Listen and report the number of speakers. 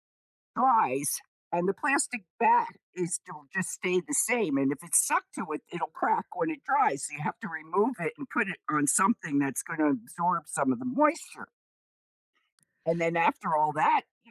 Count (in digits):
1